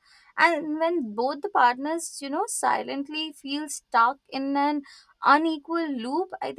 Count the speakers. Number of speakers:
one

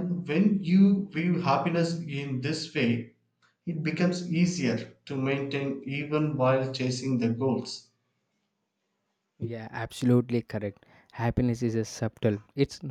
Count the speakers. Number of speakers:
two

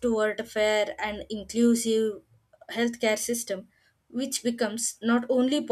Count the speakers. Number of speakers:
one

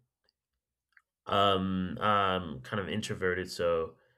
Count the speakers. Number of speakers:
one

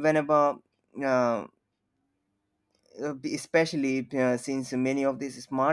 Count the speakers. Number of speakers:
one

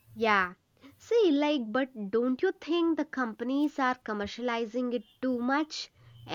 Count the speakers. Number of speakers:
one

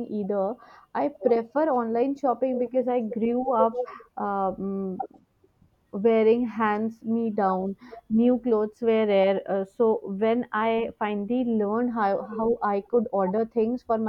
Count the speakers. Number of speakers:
one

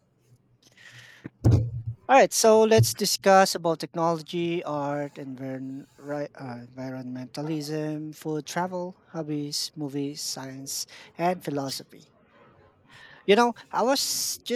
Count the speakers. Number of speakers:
one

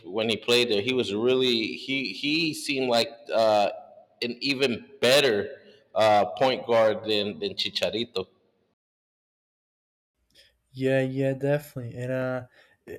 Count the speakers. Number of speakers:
two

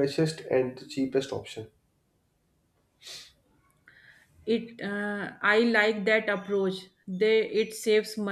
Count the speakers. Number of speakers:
two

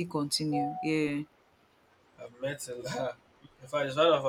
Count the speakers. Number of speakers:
two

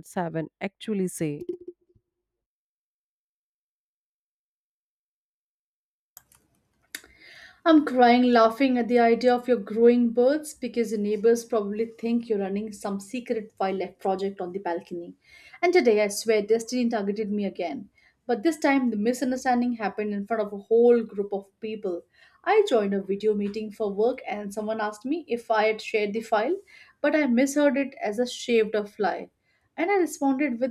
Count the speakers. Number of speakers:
two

